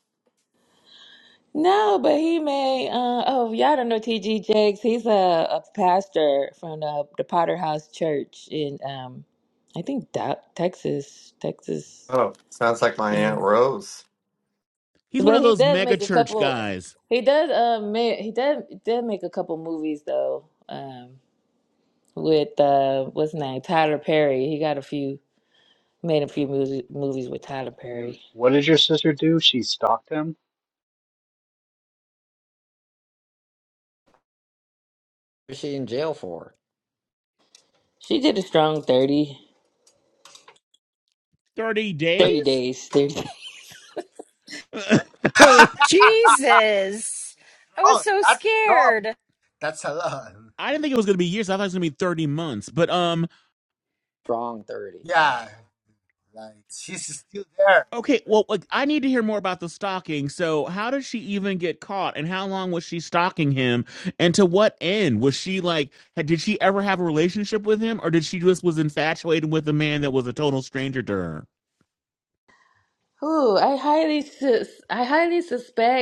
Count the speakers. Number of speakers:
7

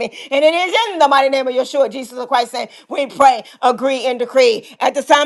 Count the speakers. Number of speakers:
1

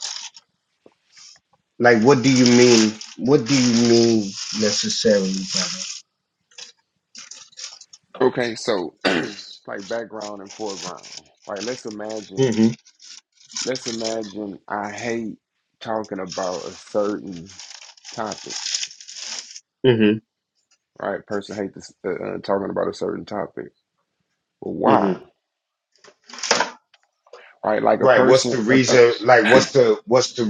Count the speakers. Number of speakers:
2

